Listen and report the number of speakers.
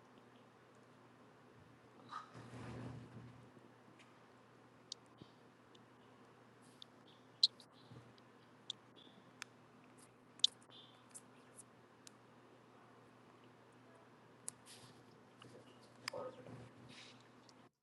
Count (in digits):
0